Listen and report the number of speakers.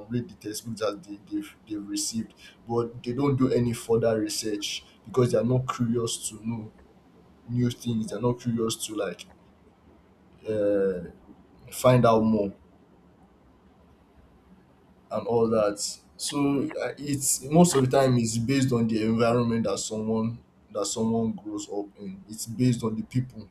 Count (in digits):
1